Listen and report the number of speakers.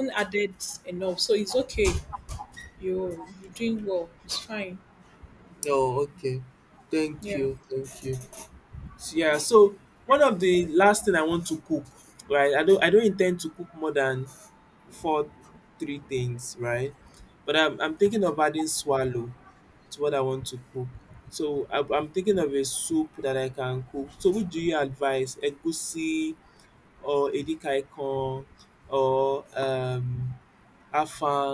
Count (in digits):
2